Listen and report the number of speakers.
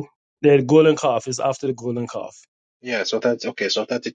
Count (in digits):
2